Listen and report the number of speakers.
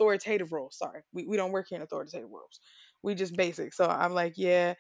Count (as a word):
one